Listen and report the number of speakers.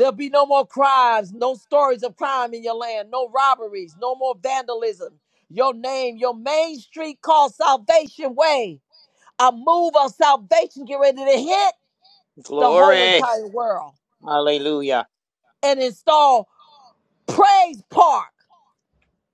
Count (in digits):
2